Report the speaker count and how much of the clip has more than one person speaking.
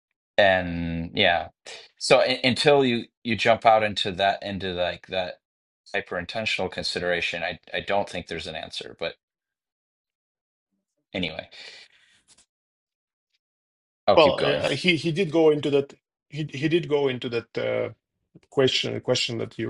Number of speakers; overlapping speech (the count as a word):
two, about 3%